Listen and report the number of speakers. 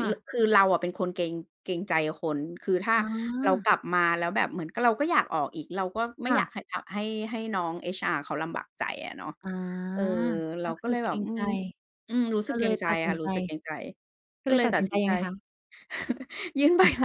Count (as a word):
two